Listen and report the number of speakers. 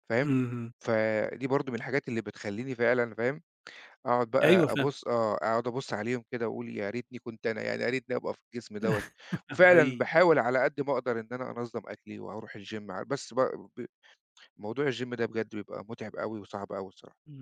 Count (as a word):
two